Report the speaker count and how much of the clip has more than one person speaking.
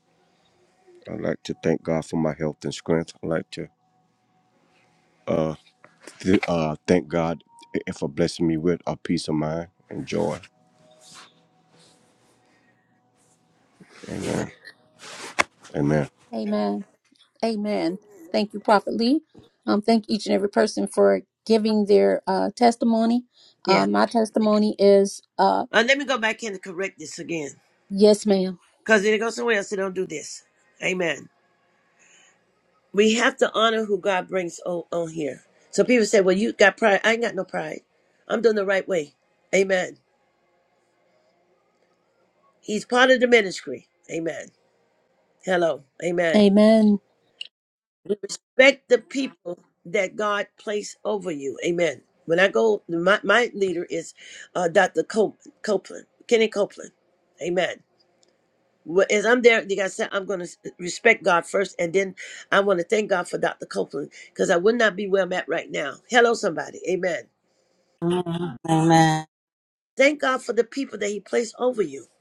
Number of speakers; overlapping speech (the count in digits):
4, about 1%